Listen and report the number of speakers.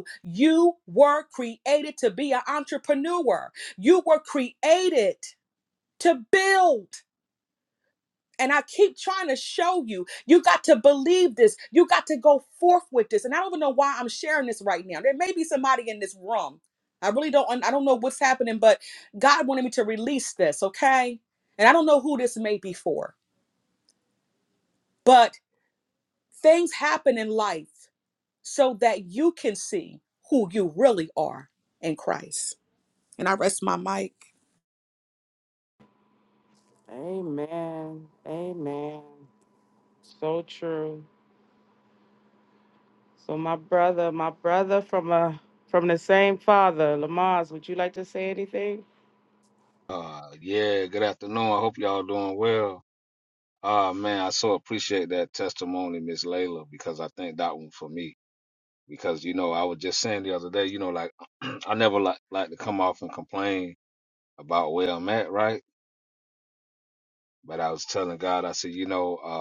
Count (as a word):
three